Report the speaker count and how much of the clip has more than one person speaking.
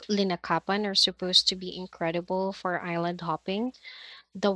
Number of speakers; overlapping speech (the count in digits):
1, no overlap